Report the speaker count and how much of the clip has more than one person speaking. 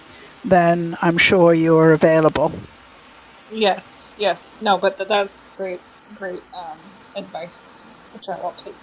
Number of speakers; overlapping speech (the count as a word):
two, no overlap